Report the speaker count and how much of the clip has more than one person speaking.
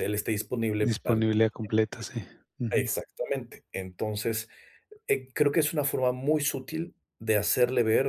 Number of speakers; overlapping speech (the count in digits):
2, about 7%